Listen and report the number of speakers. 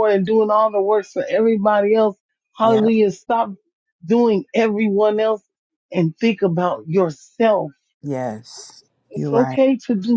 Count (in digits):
2